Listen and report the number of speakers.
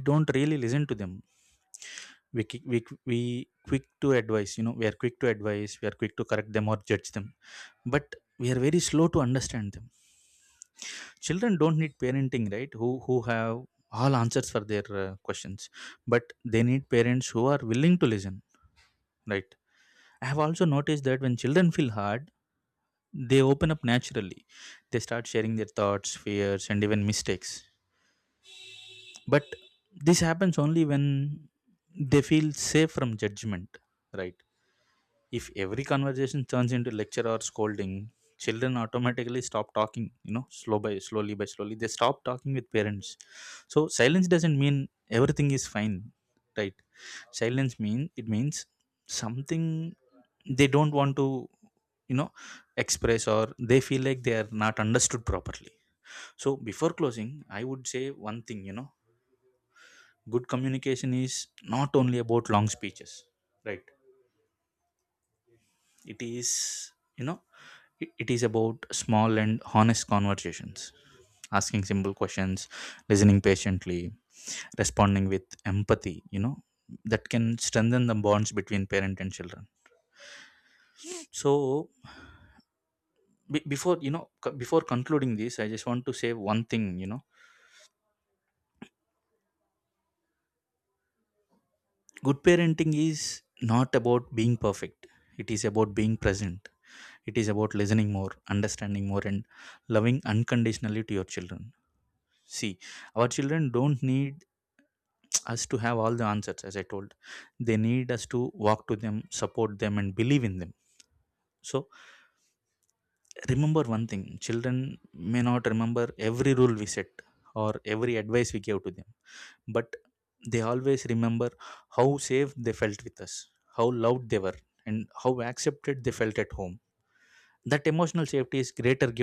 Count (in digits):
1